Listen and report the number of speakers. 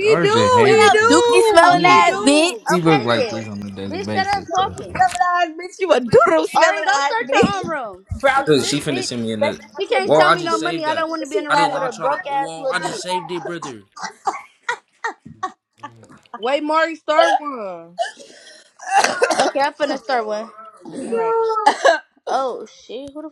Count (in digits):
4